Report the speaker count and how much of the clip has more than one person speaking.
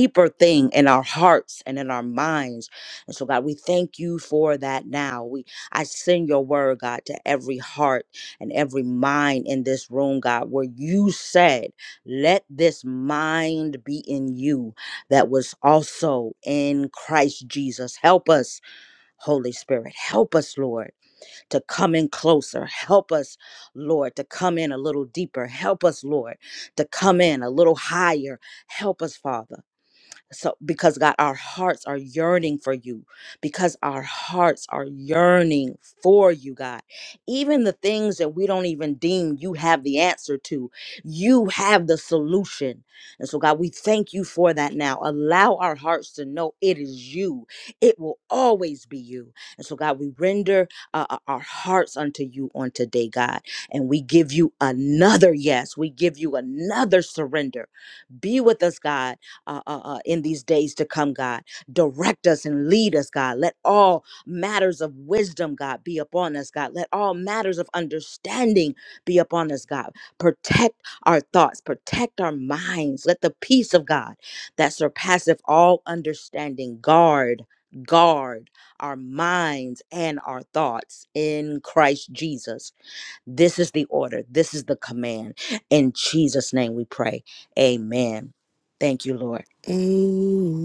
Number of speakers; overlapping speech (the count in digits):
2, no overlap